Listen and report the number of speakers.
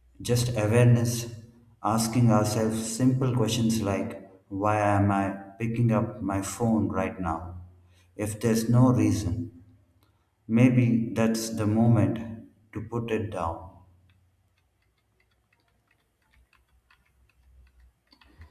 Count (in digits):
1